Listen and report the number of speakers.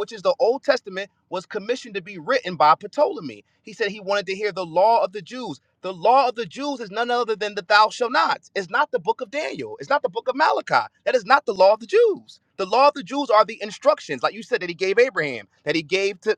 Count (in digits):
1